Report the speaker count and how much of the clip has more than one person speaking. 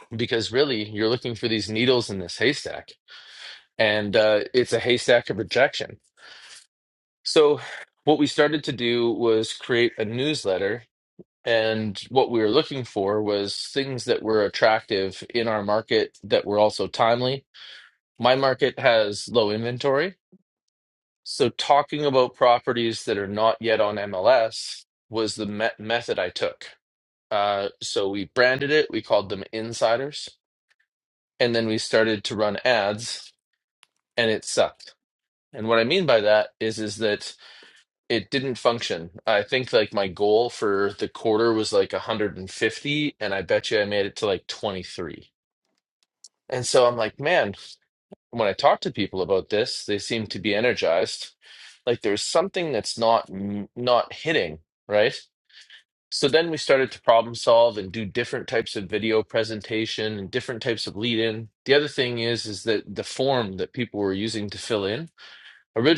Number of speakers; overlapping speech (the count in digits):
1, no overlap